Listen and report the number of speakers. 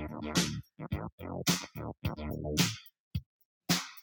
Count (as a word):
zero